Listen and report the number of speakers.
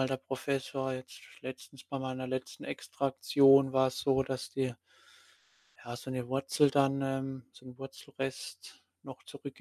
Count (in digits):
1